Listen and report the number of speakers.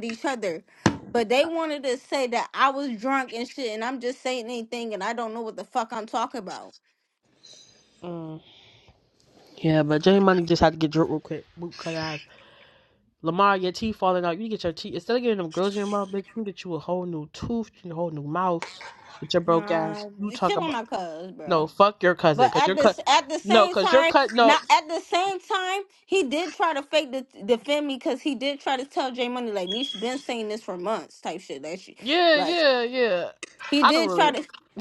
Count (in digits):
2